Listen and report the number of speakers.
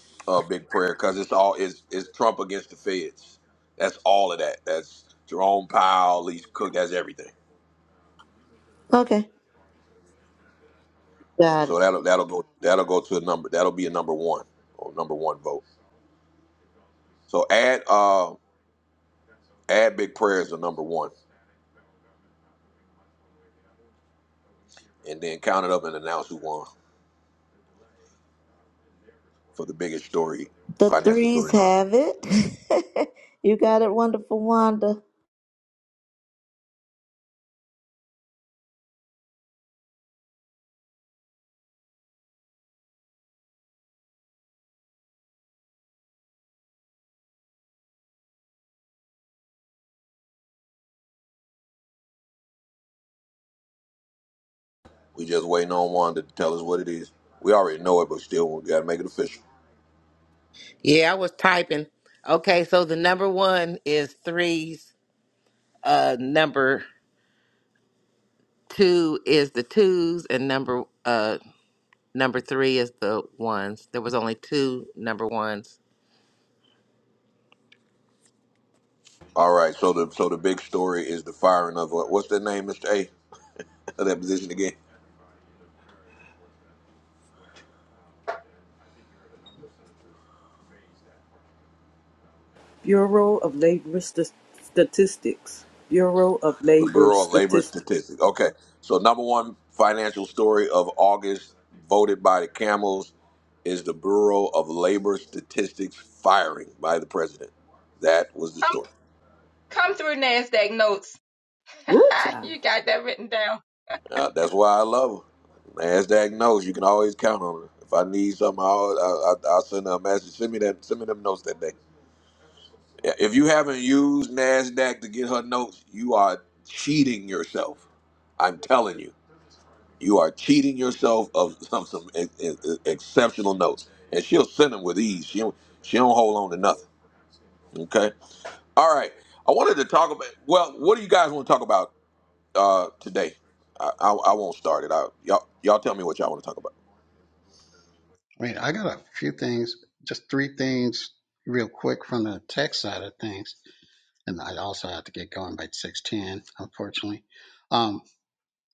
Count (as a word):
six